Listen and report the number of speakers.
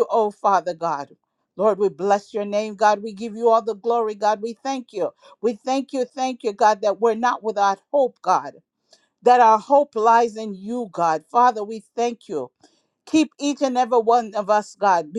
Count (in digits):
1